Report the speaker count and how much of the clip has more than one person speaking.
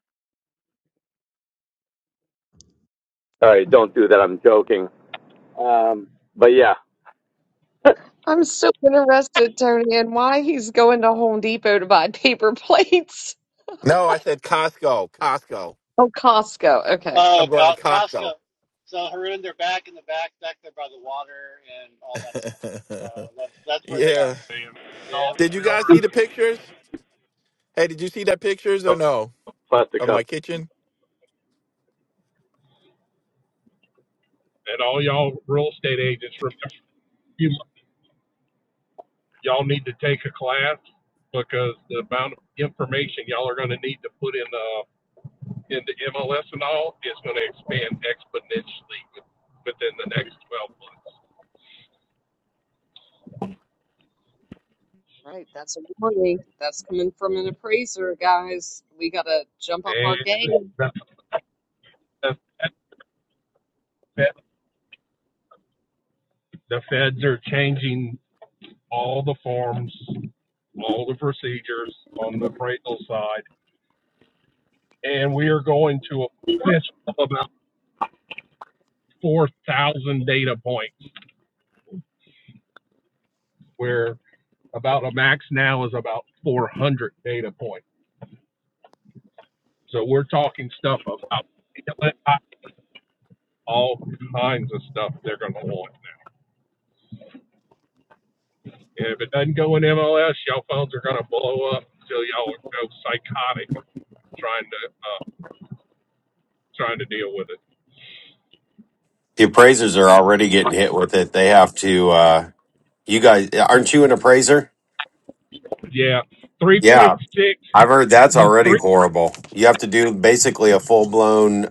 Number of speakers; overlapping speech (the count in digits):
6, about 3%